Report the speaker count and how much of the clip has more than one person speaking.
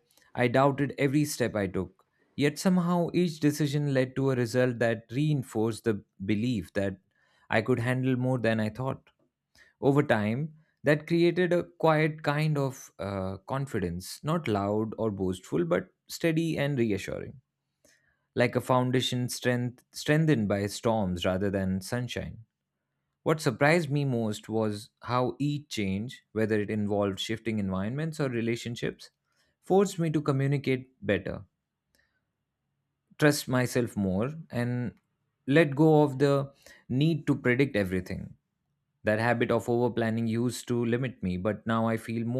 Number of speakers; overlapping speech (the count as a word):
one, no overlap